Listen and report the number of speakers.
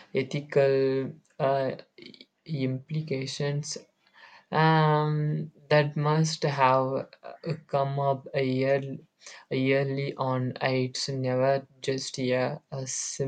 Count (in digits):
1